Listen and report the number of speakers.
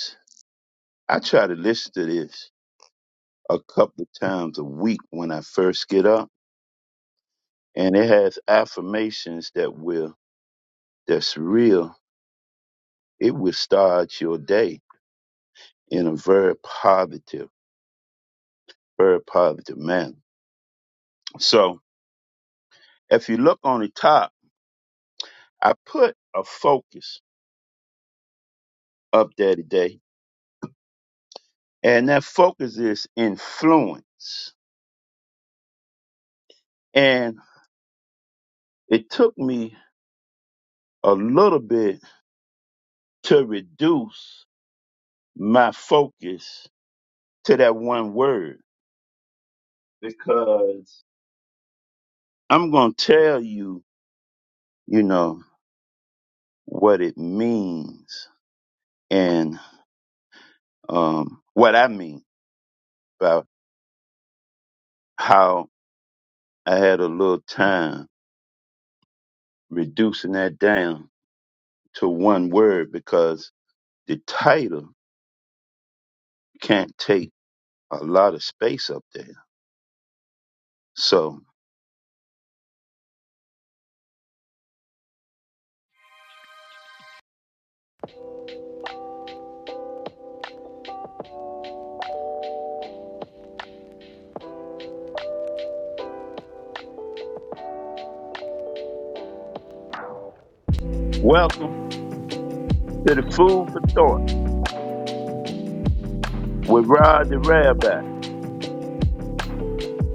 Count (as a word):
one